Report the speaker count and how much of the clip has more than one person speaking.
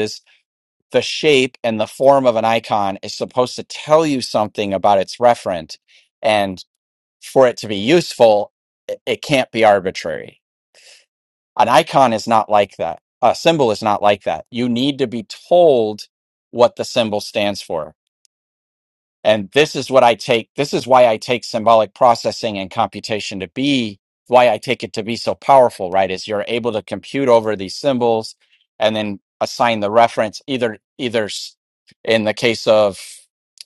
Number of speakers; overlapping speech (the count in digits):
1, no overlap